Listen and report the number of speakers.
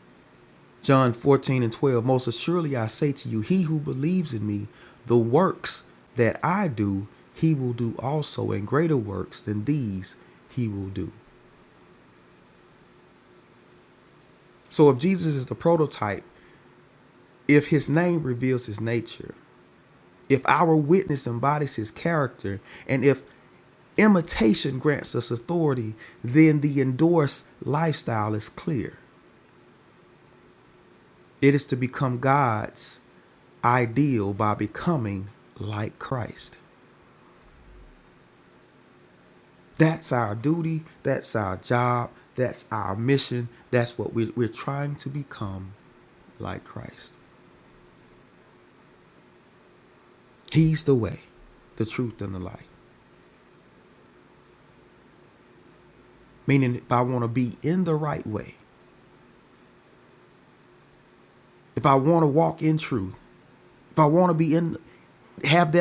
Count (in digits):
1